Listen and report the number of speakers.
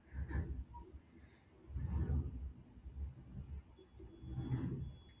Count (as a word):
zero